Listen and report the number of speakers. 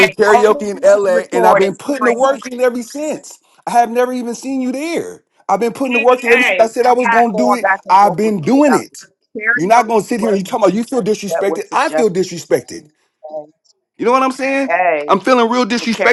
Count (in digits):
2